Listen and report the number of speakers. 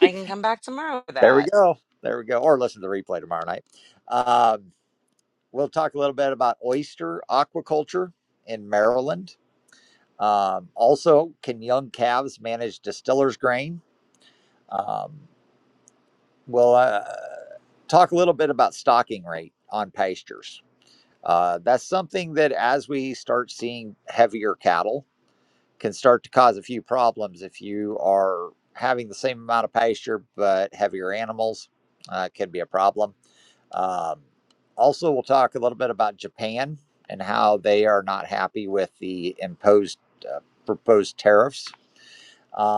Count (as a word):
two